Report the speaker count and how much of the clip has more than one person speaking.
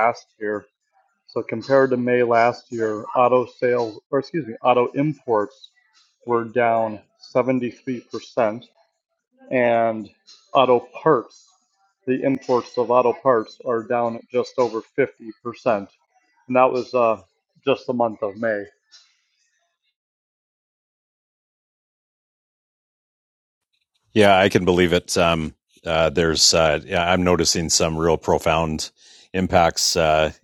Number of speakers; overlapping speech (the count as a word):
two, no overlap